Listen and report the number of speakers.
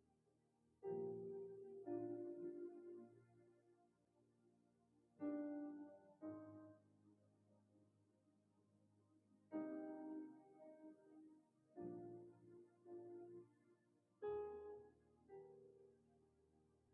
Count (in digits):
0